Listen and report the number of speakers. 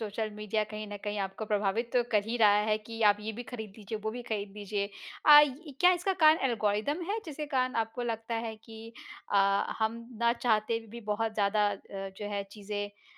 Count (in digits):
1